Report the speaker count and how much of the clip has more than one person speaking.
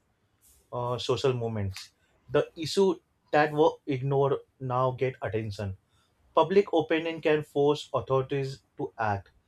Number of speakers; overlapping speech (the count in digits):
1, no overlap